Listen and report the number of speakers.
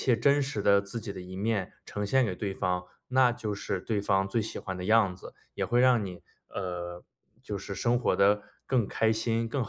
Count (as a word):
one